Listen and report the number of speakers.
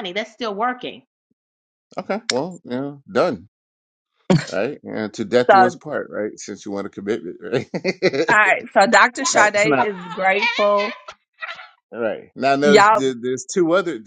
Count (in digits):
3